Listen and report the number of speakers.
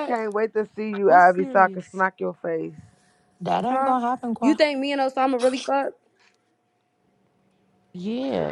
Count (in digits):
4